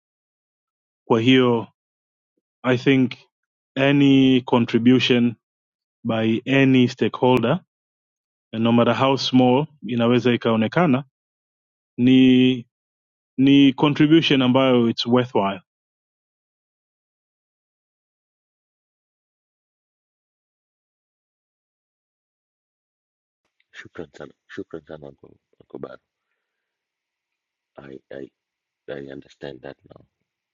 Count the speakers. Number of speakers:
two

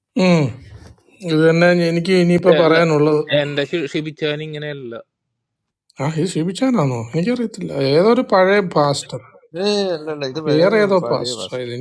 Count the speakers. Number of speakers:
three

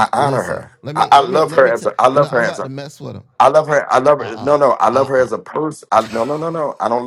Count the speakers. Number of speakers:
two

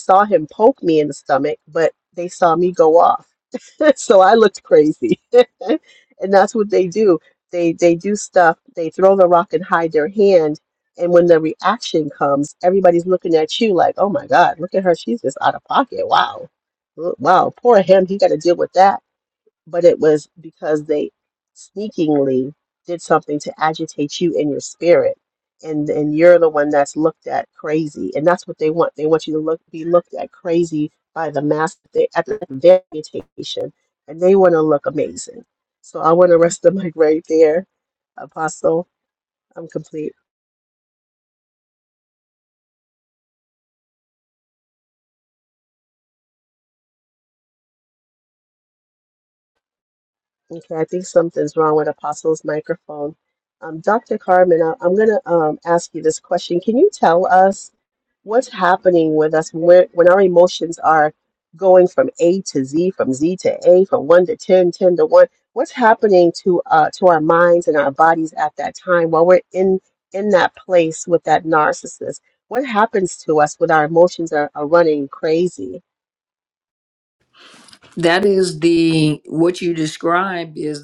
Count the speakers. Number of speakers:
two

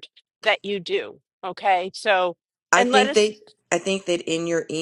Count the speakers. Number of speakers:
two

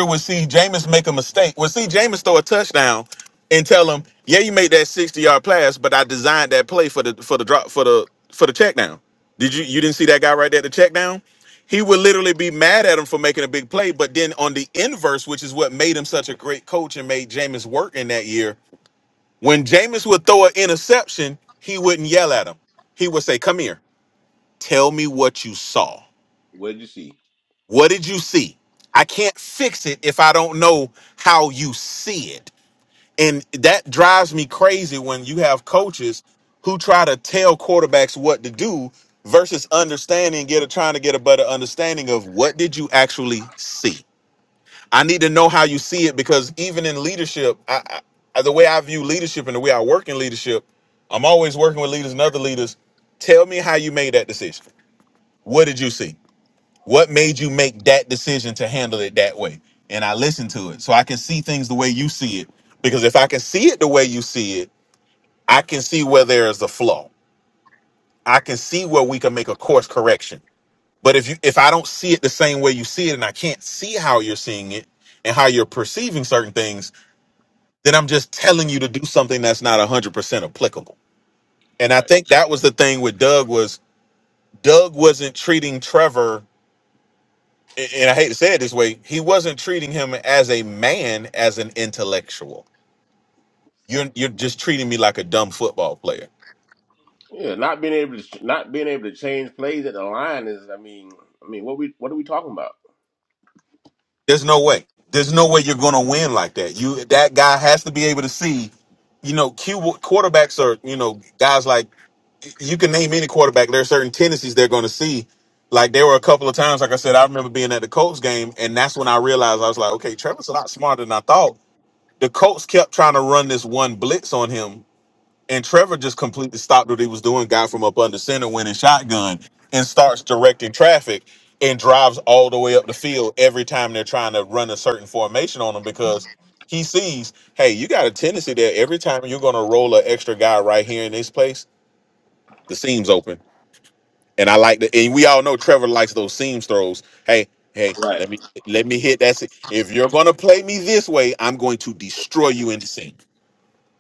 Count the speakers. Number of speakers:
two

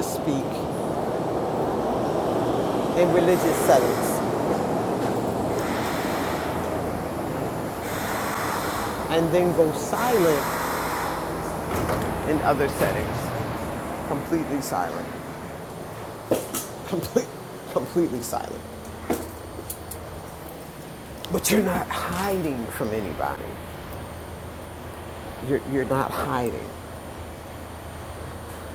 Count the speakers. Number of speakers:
one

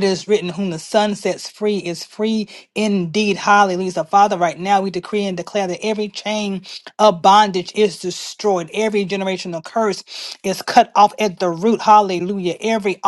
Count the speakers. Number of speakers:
one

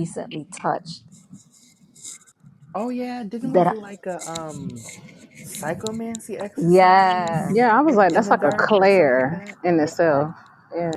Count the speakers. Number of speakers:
three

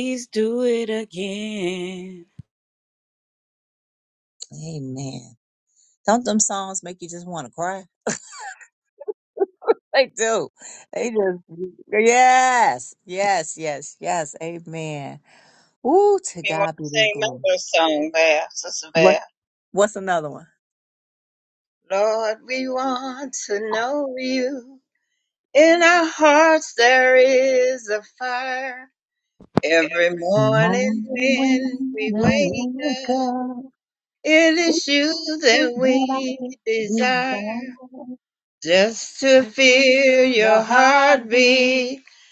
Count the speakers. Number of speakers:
three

